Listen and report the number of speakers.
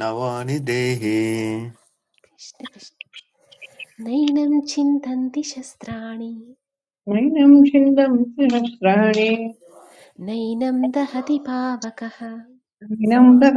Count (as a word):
three